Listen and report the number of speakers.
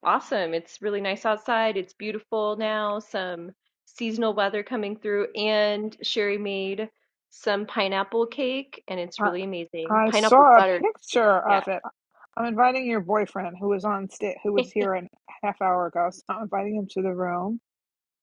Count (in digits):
2